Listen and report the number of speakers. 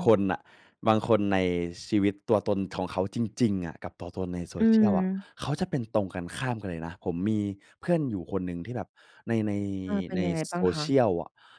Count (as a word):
two